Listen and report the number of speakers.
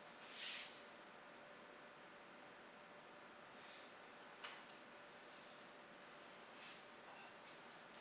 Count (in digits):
0